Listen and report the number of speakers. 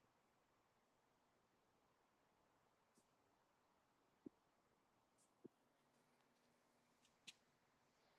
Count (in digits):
0